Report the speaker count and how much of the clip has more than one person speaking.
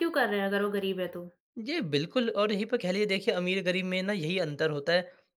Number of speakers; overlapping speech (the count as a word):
two, no overlap